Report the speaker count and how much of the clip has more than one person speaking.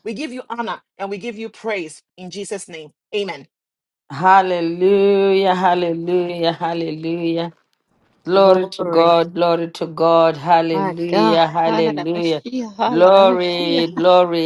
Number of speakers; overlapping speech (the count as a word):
three, about 26%